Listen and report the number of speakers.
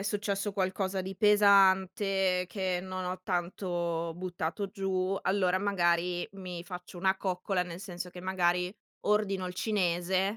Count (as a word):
one